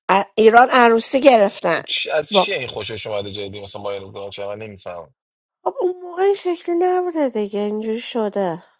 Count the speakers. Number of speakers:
2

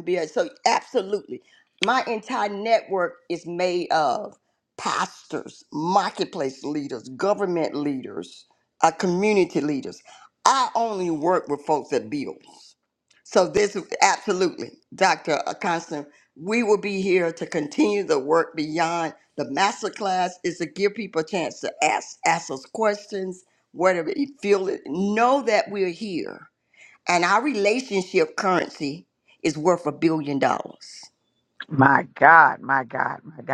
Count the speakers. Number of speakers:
2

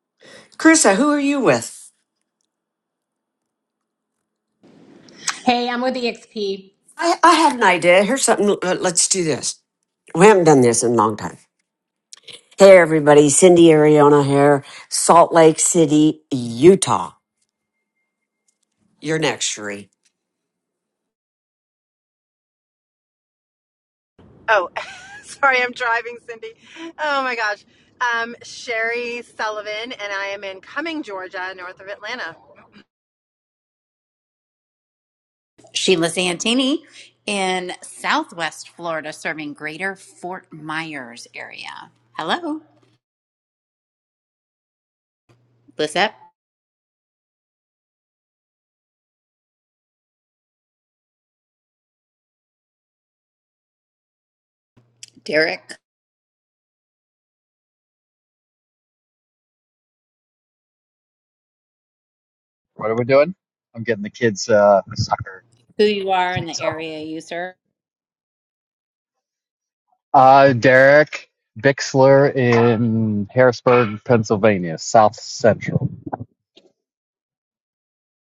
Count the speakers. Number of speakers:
5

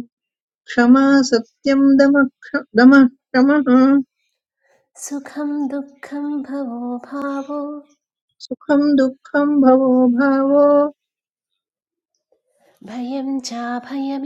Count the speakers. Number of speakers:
2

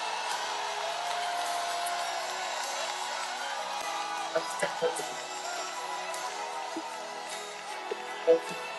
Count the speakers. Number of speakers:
0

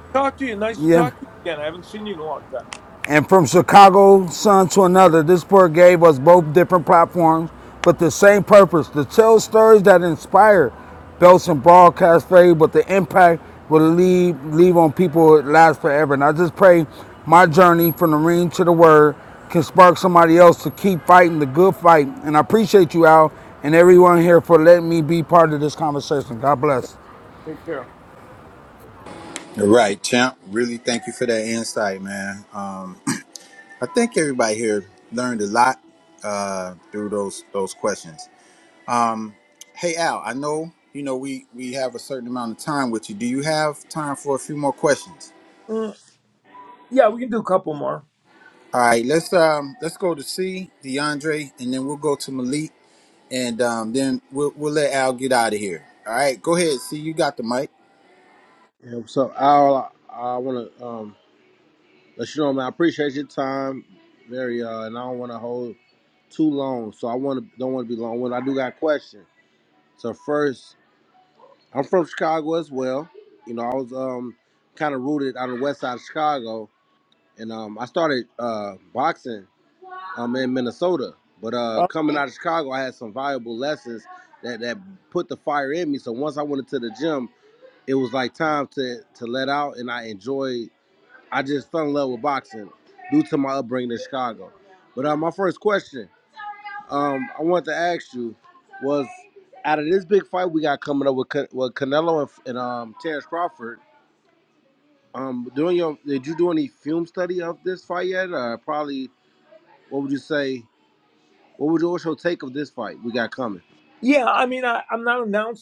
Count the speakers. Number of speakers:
4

